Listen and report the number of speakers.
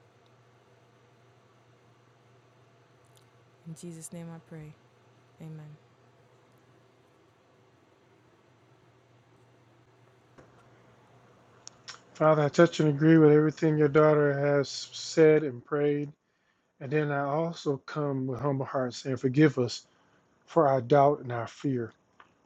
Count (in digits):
2